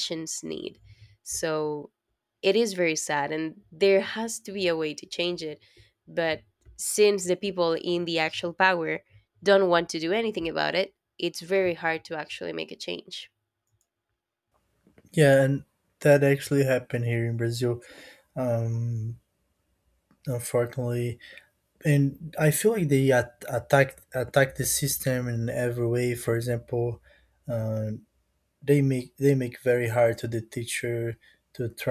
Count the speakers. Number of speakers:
two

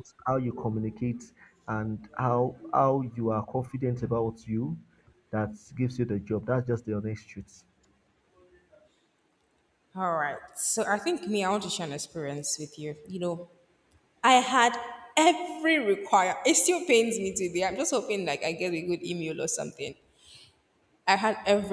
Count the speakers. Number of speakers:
two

